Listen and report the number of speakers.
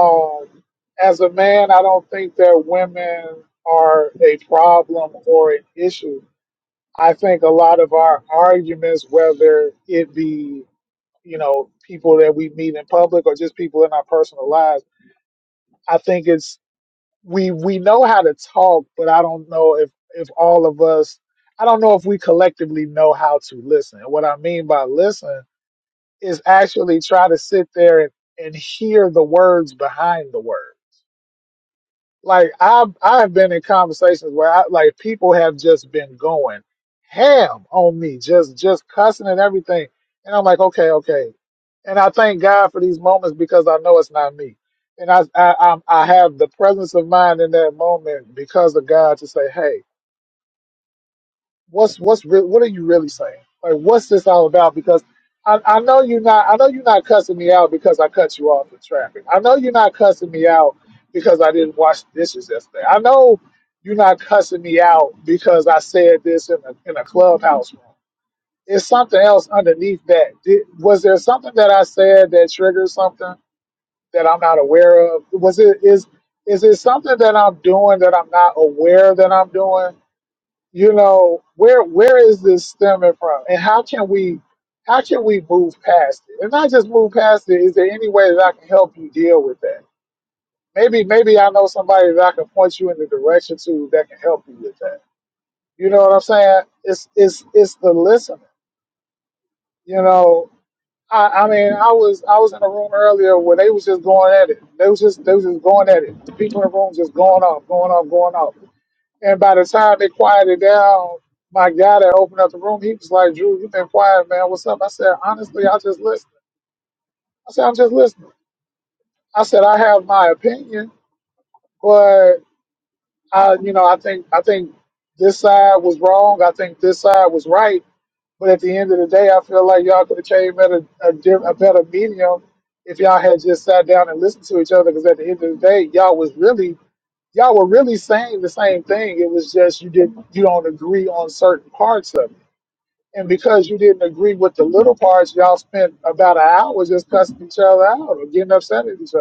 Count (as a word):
one